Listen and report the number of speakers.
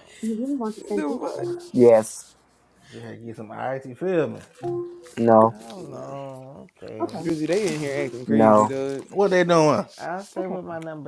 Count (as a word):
four